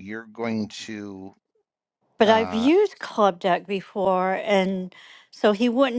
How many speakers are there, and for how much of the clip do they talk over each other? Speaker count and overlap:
2, about 8%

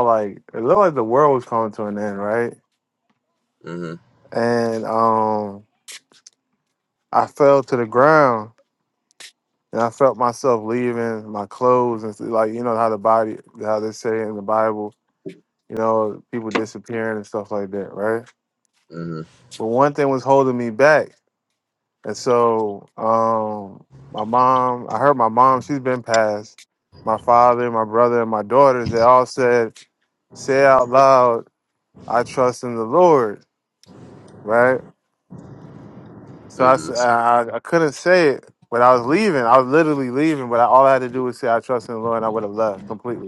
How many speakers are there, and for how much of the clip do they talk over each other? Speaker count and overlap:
2, about 1%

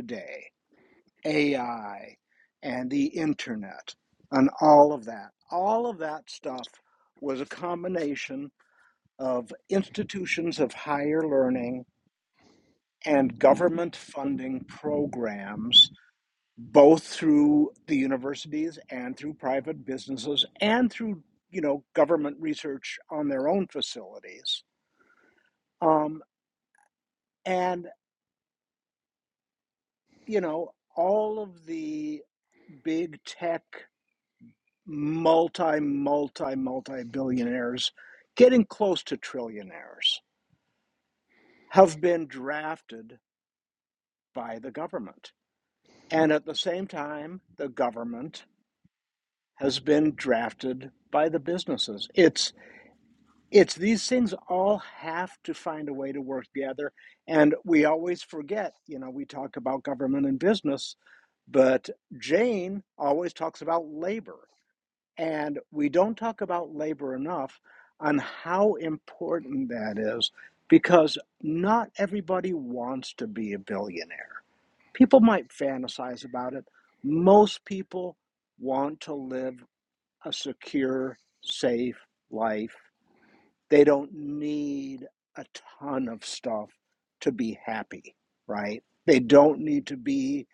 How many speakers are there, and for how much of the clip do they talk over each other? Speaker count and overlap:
1, no overlap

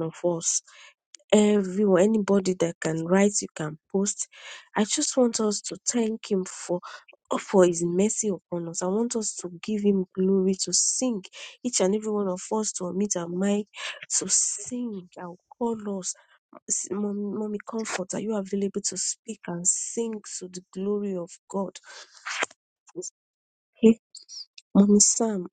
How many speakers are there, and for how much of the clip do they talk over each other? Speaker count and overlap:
1, no overlap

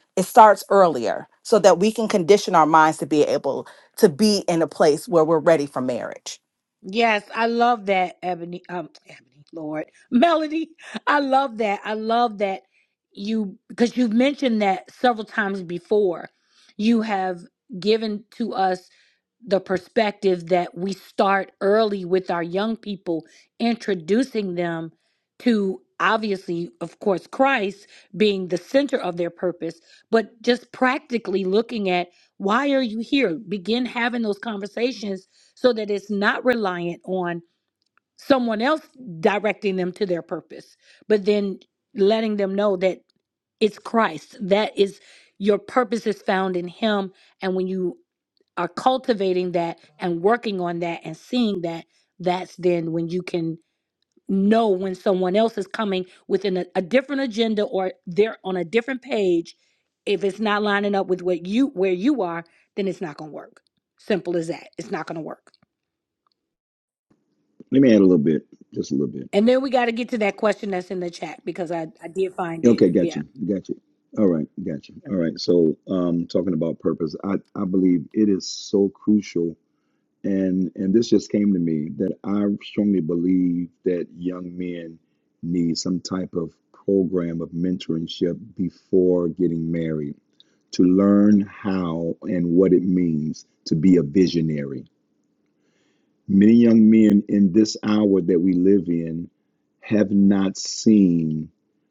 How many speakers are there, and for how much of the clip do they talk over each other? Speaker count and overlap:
3, about 1%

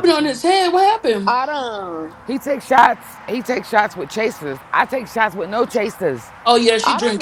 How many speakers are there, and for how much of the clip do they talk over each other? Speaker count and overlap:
3, about 11%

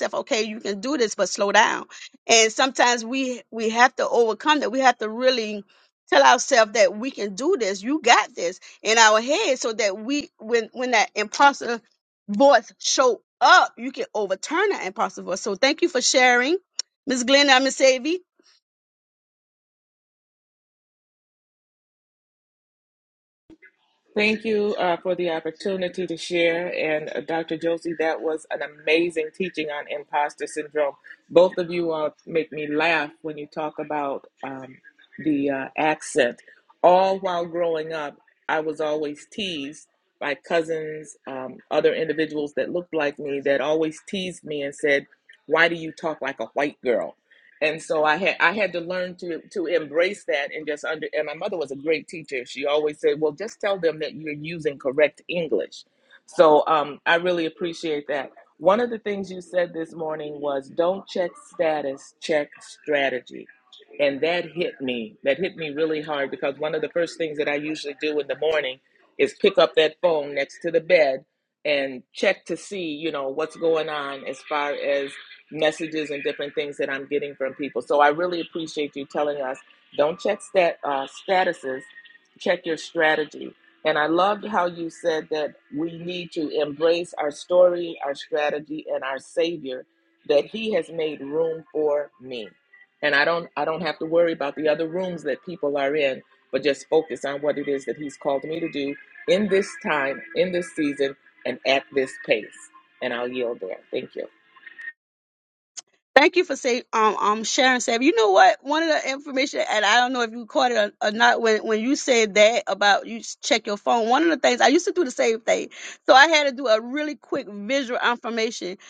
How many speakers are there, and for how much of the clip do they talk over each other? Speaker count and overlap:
2, no overlap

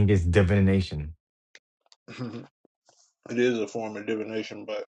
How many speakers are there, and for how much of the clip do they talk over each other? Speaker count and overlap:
2, no overlap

